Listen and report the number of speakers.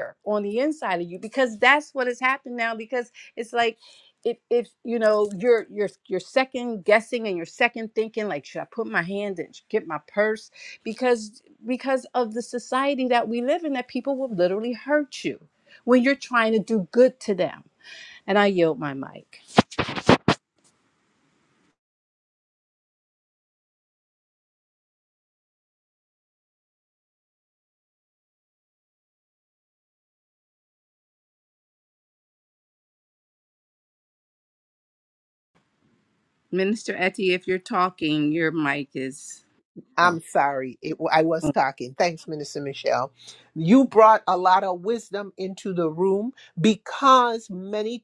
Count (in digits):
2